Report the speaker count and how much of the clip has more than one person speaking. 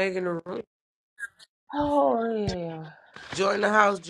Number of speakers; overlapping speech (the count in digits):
2, no overlap